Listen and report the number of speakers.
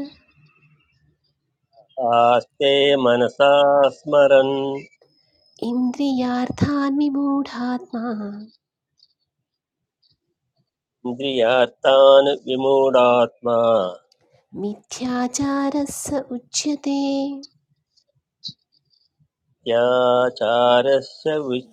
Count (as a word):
two